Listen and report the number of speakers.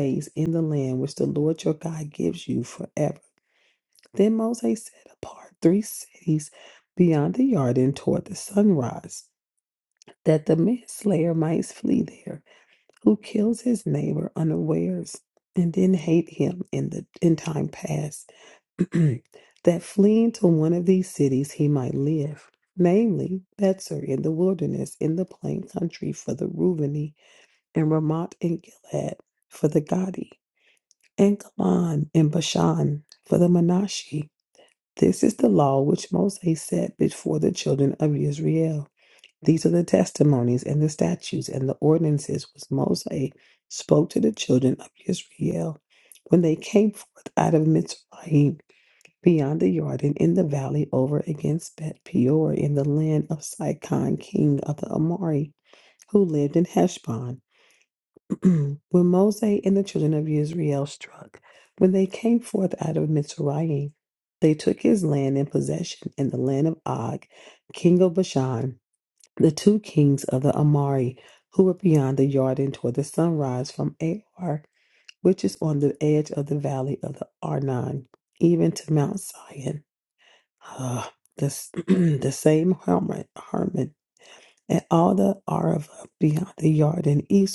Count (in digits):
1